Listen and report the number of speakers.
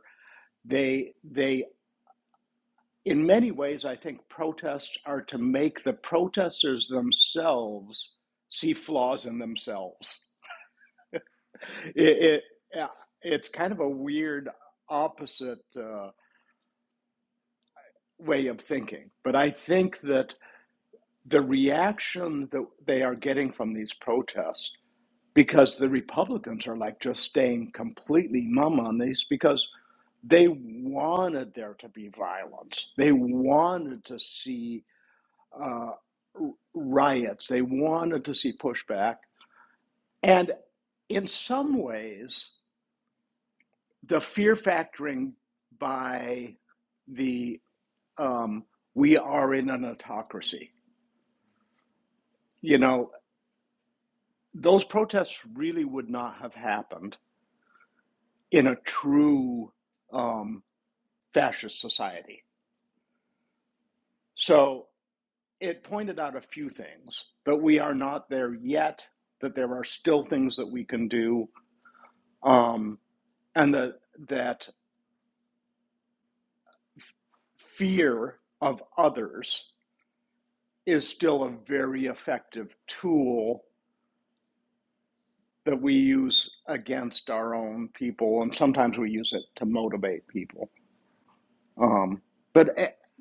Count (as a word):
one